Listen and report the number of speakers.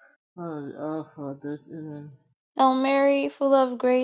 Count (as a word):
two